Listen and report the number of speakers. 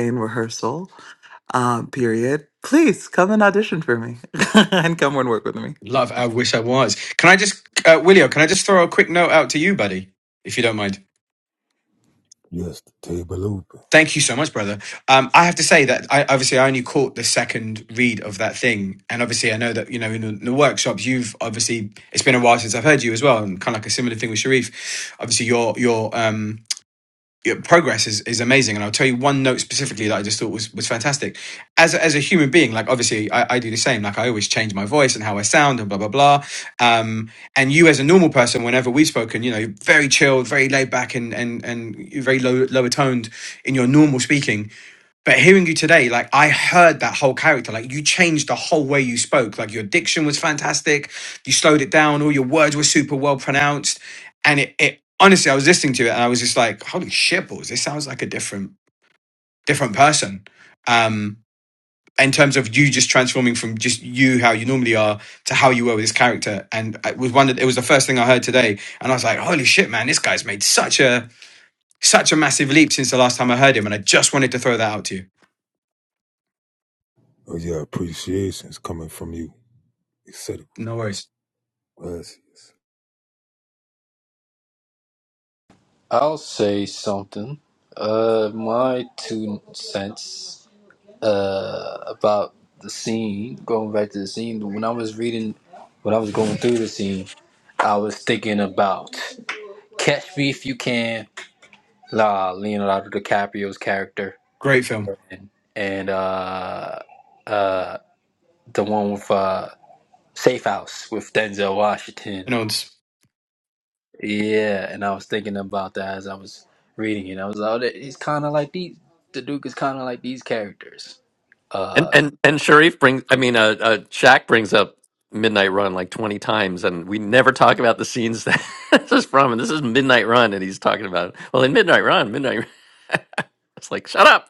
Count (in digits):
5